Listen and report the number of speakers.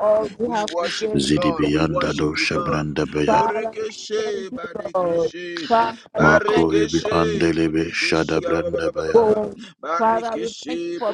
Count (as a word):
three